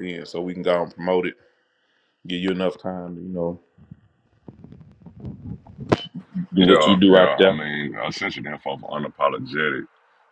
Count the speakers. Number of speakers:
2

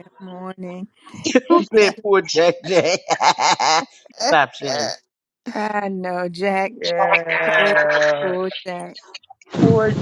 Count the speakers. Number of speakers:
3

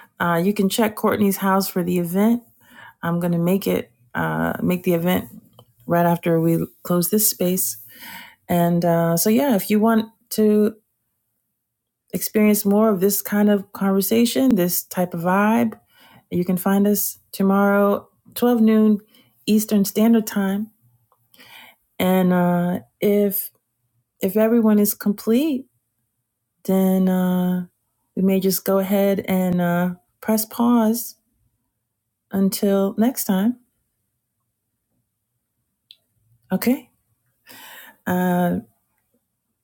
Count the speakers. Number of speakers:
1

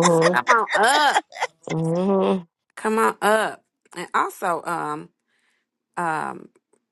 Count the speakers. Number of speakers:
2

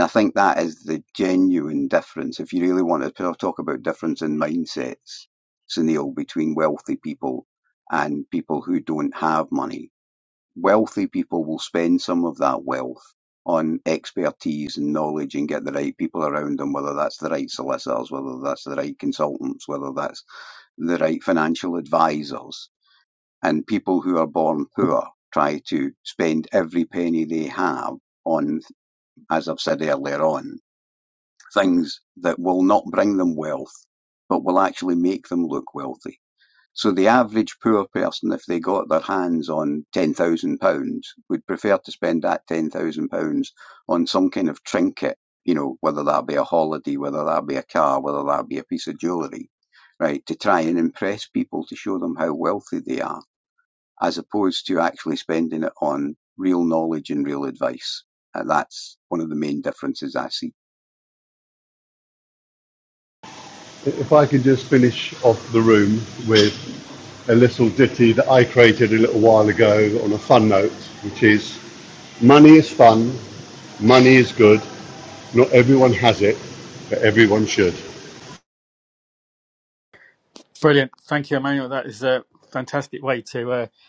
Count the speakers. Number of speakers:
3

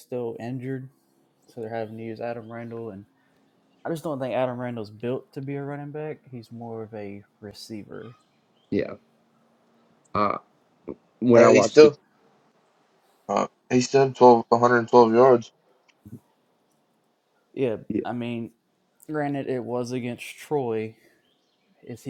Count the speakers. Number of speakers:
3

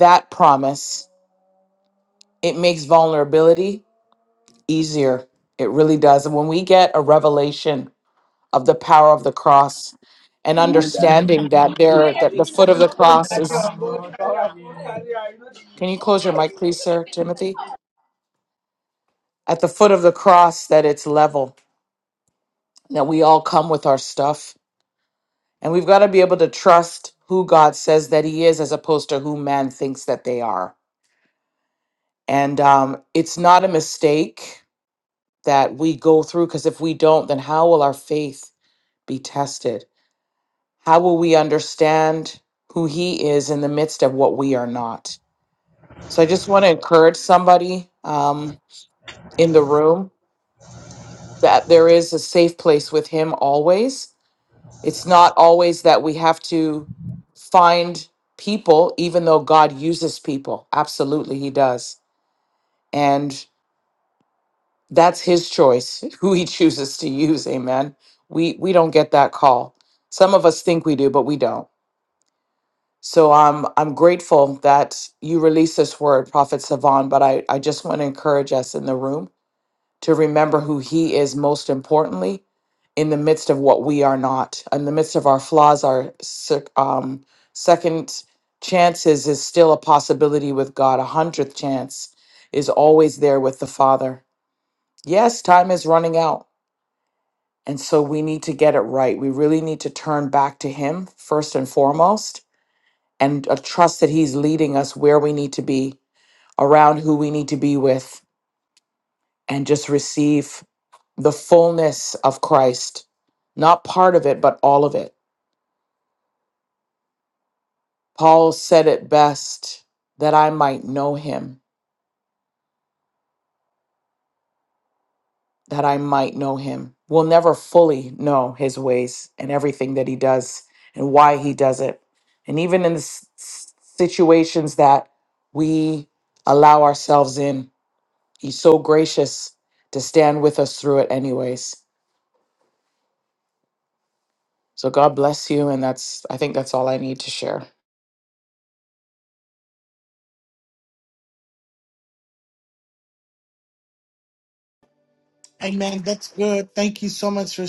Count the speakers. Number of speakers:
3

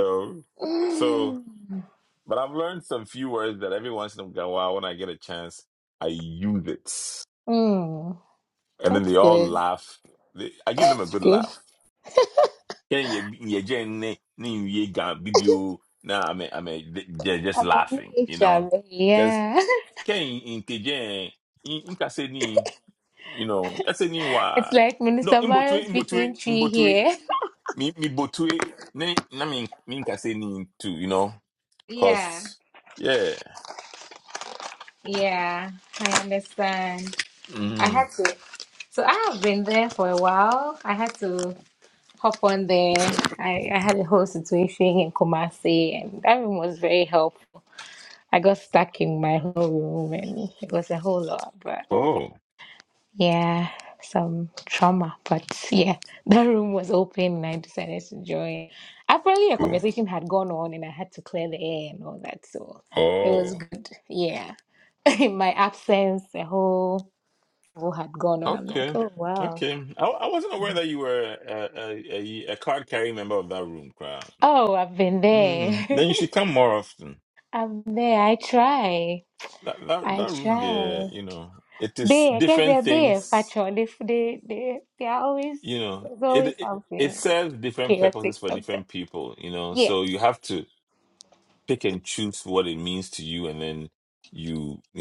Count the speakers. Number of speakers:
2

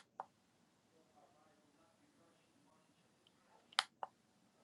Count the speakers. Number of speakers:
0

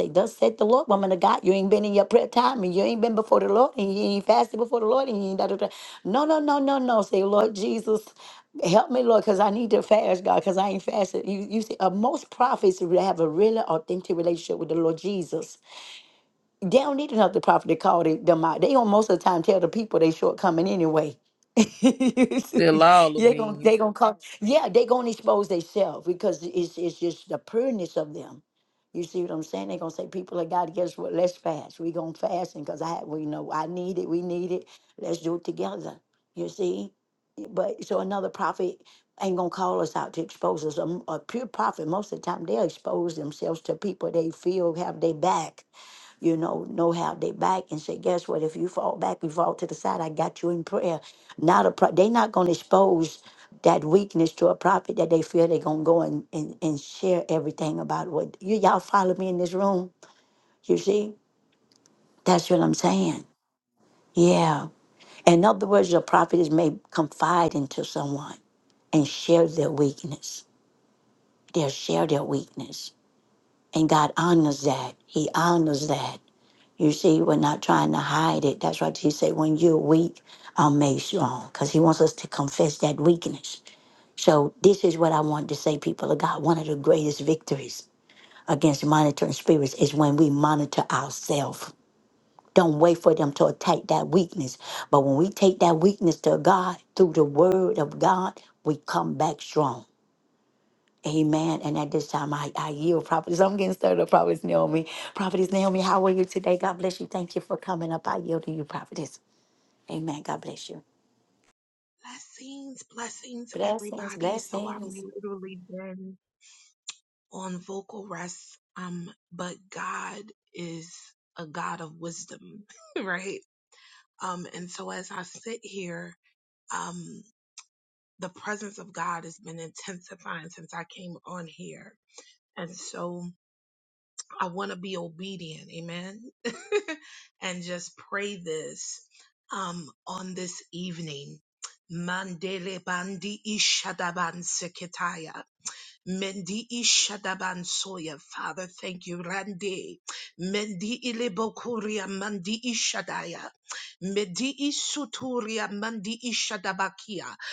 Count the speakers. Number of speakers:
3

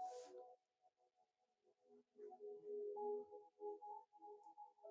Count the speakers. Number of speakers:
0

